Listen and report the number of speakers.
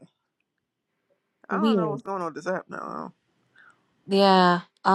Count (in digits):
2